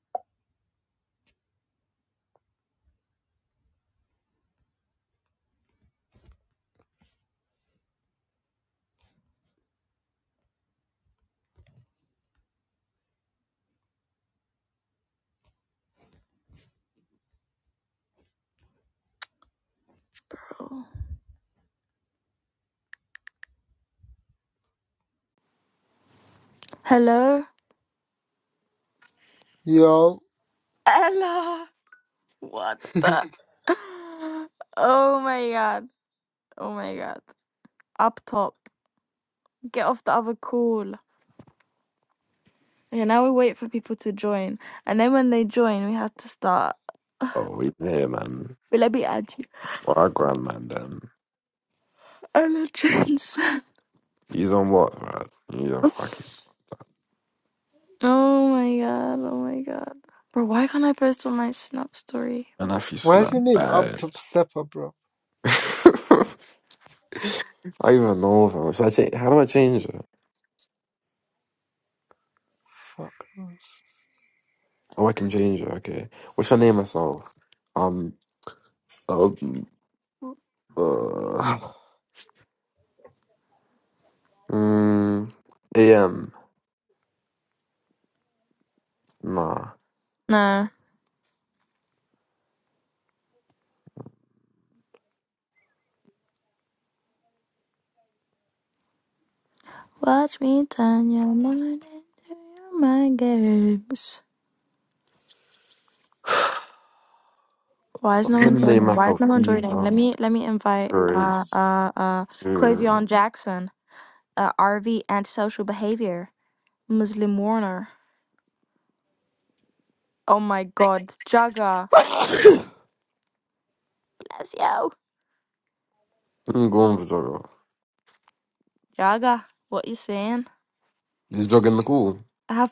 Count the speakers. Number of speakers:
3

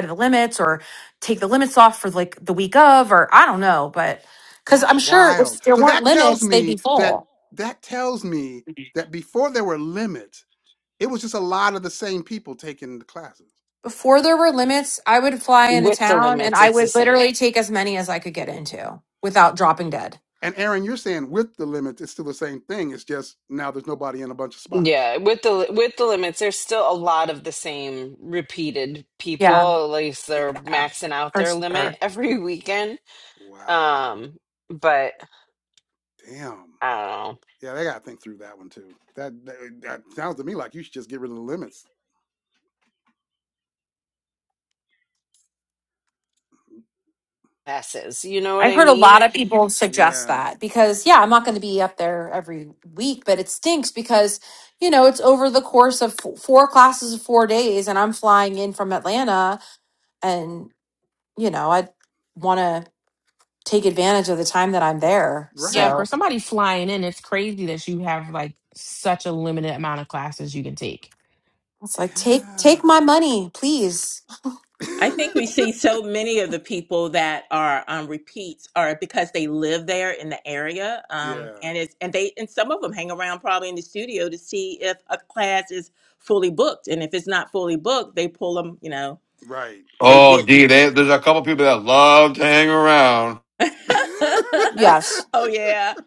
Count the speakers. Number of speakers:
6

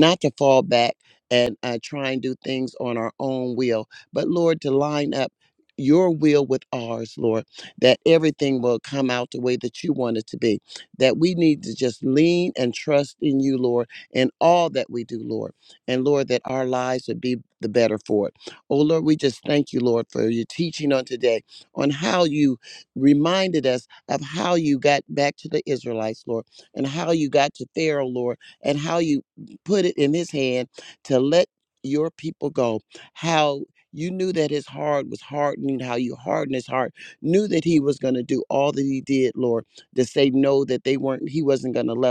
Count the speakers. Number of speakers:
1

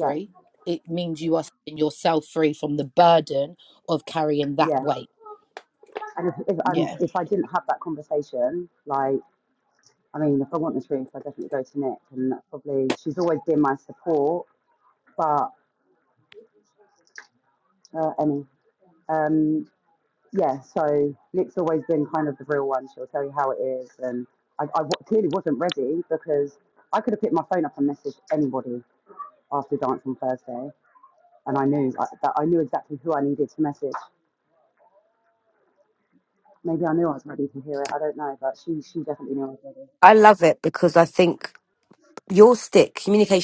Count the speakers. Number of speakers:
3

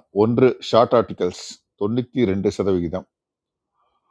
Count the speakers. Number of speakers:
1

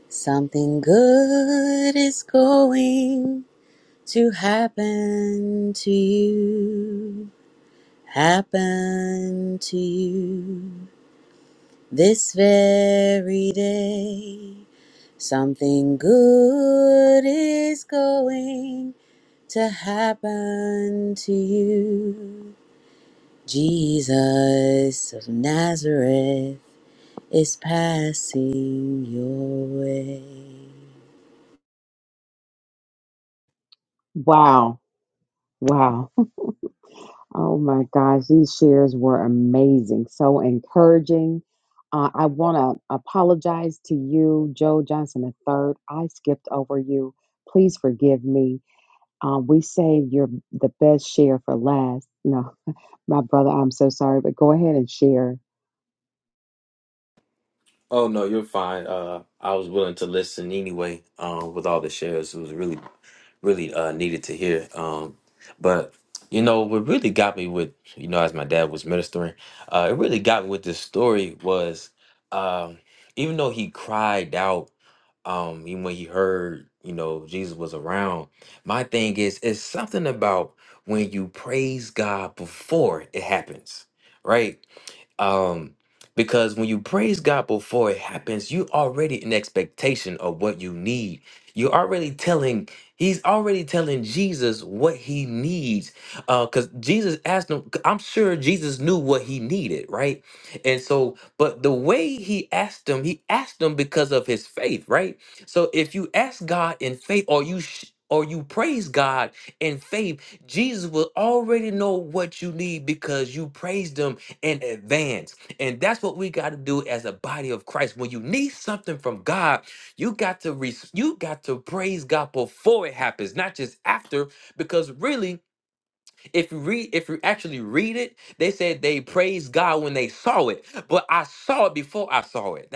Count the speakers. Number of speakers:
3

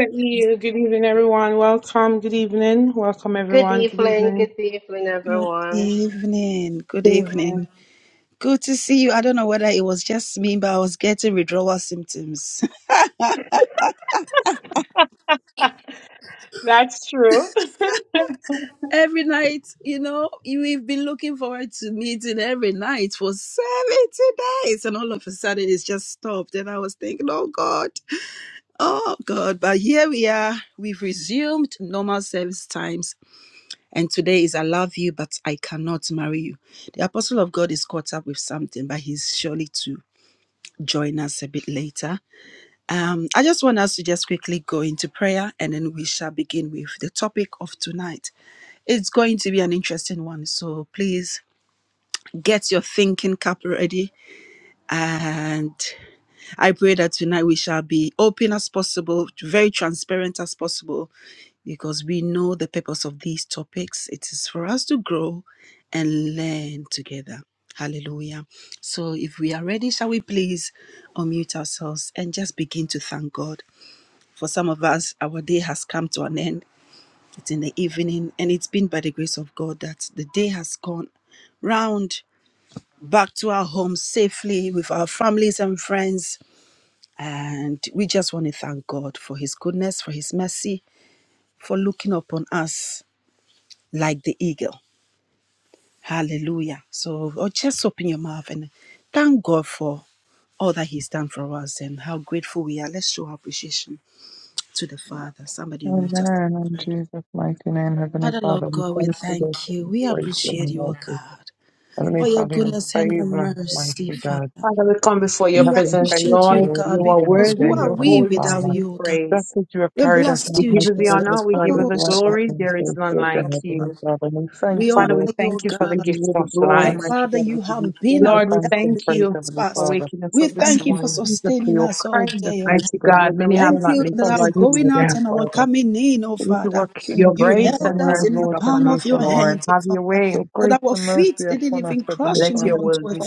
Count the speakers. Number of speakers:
4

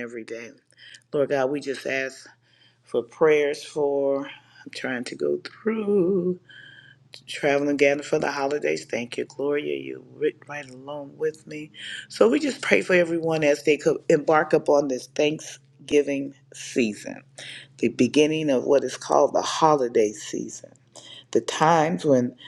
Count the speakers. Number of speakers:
1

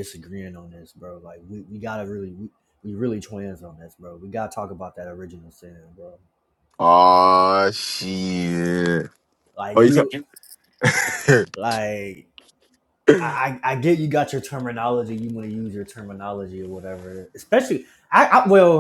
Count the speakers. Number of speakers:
2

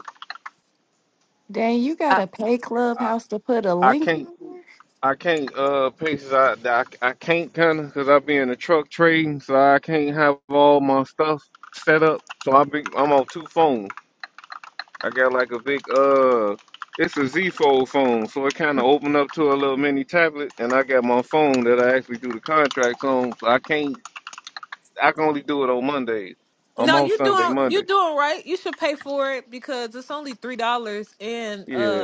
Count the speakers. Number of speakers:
3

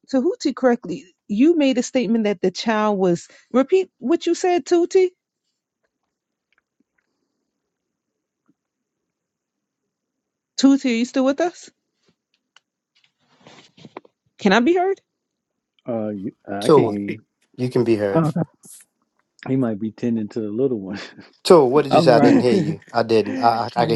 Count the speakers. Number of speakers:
3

